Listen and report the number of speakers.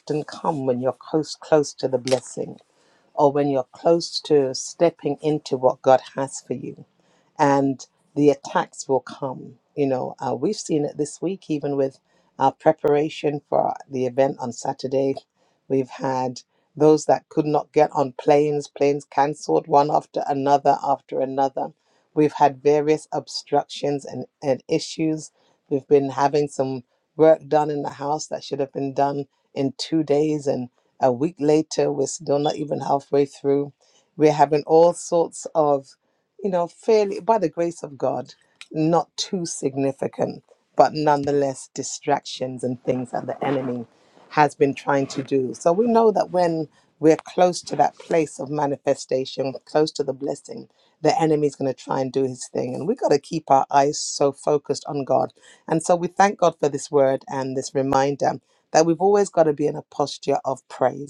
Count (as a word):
one